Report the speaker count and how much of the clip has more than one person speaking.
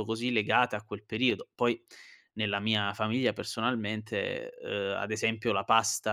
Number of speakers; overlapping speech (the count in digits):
1, no overlap